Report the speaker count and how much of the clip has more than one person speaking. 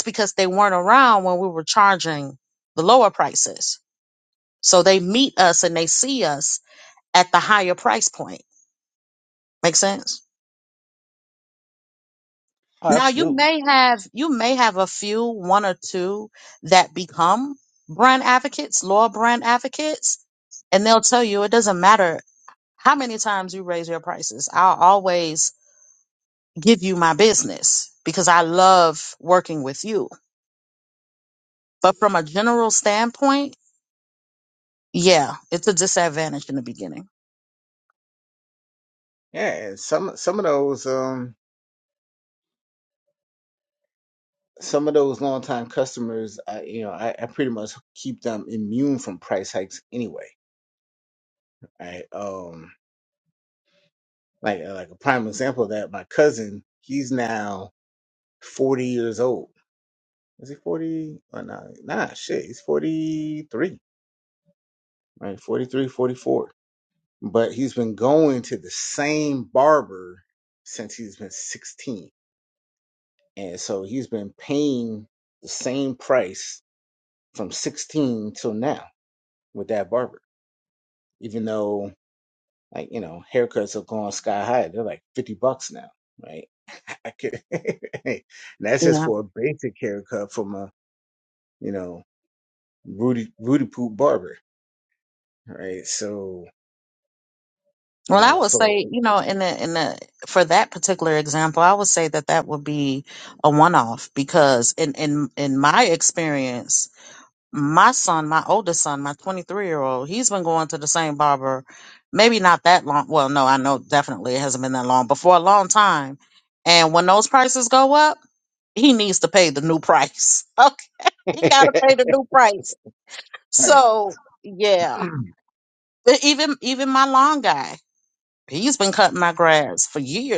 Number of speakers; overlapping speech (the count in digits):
2, about 1%